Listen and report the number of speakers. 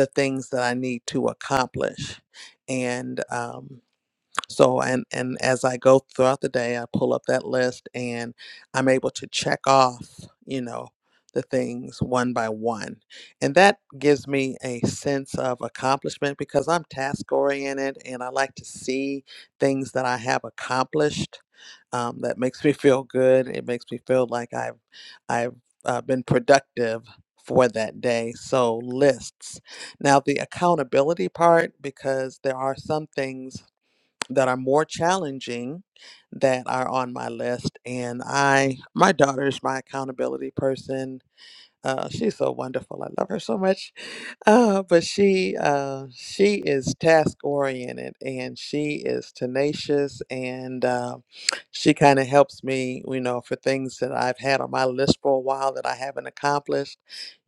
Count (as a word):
one